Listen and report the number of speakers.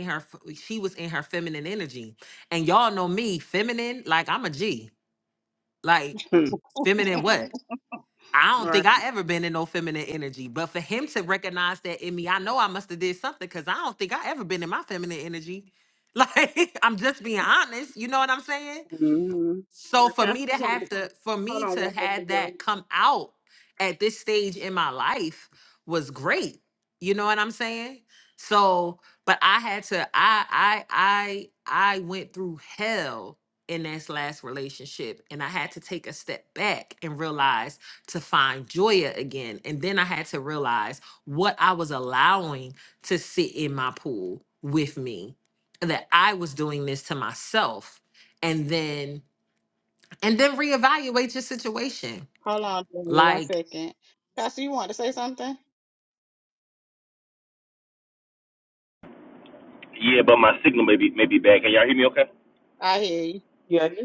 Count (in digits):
4